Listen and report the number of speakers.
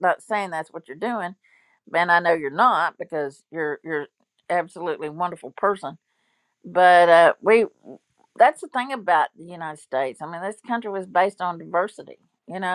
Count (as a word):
one